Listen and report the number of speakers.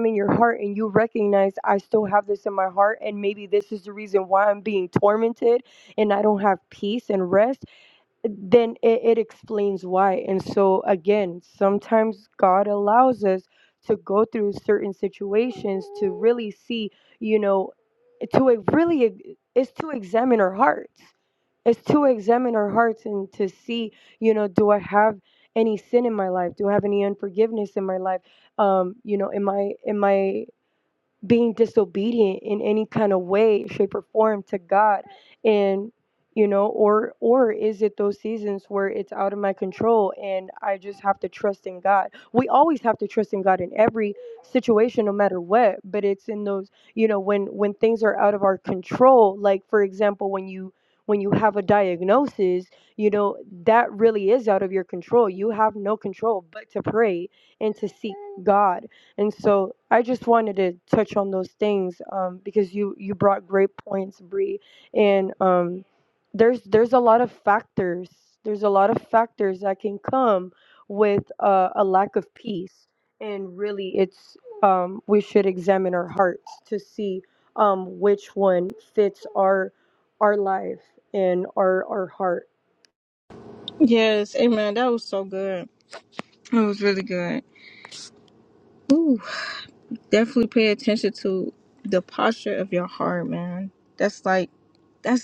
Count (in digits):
2